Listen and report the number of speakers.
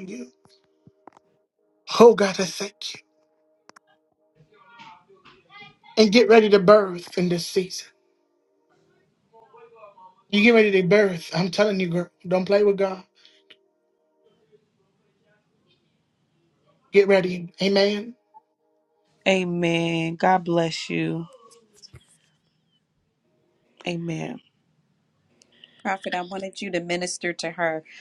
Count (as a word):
three